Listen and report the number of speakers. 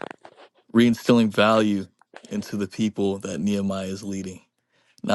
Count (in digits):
1